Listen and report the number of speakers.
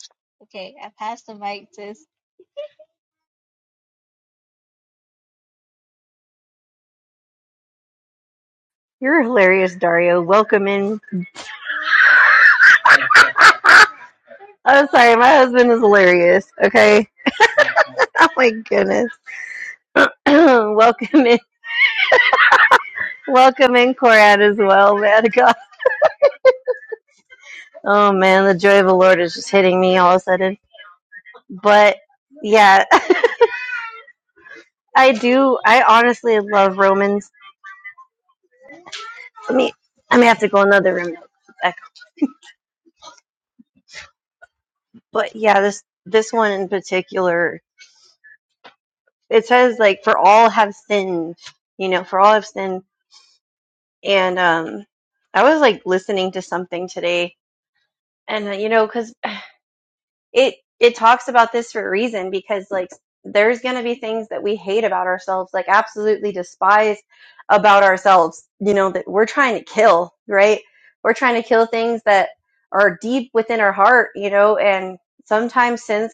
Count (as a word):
two